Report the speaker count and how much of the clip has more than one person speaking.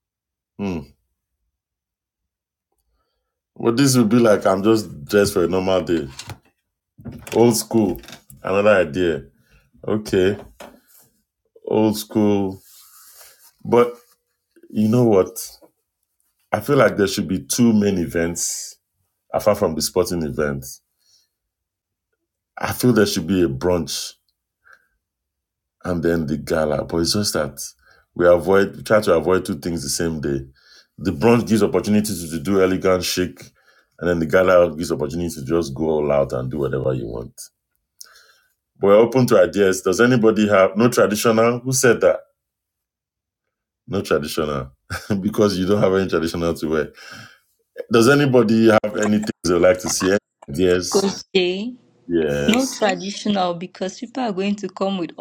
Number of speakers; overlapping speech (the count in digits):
2, about 1%